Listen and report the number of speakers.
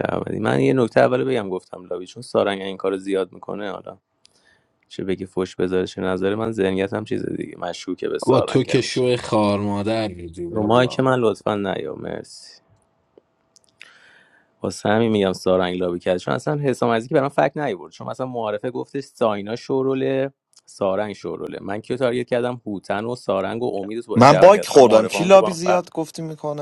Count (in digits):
3